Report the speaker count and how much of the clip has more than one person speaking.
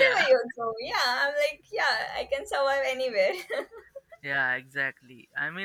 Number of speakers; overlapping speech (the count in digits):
2, about 6%